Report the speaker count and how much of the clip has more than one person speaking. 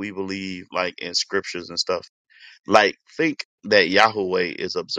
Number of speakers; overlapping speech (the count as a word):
one, no overlap